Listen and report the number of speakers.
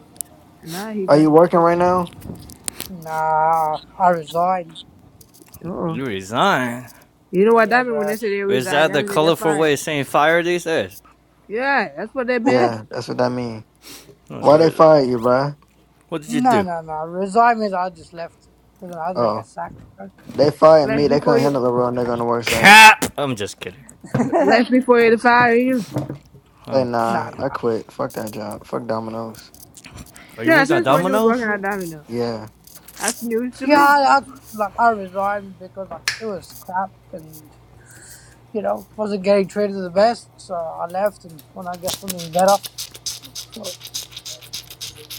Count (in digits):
4